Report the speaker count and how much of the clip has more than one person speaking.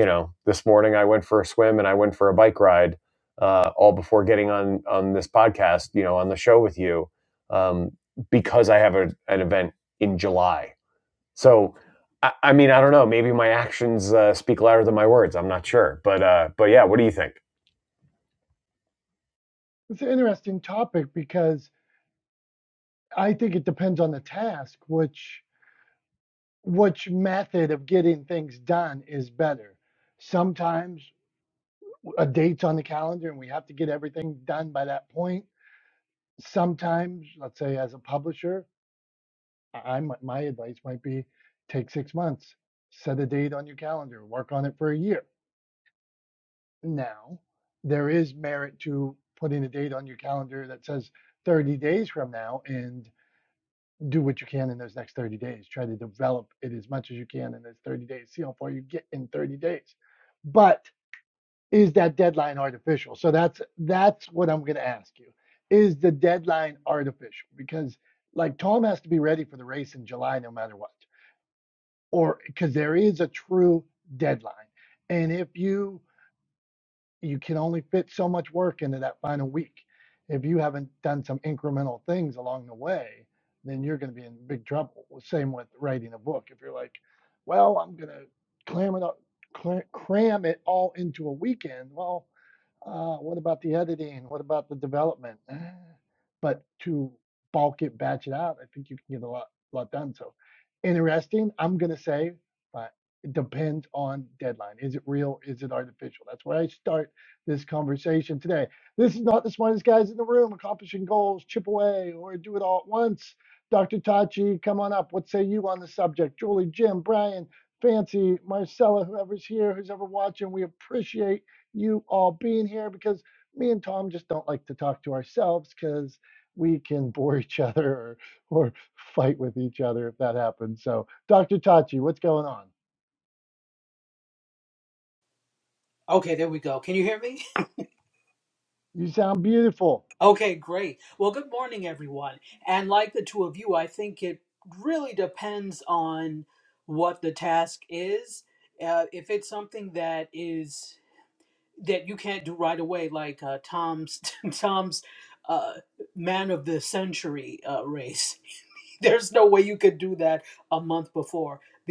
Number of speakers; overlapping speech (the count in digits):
3, no overlap